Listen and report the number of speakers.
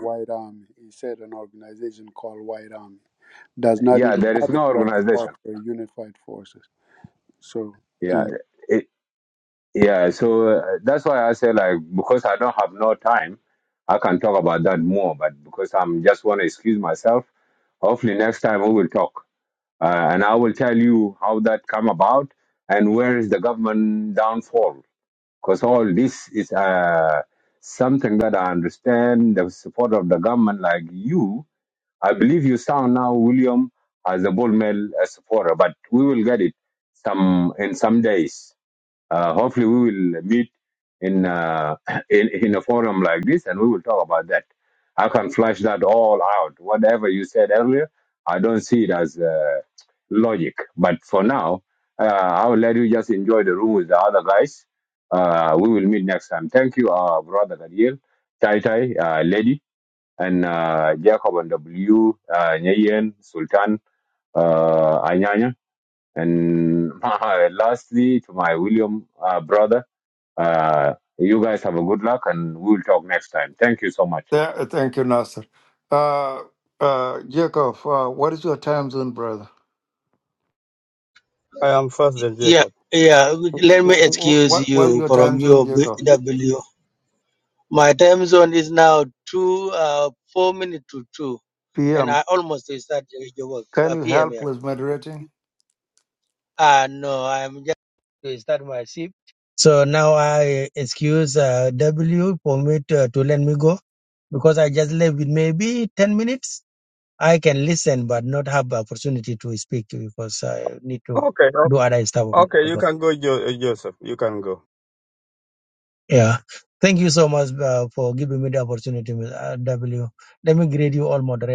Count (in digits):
5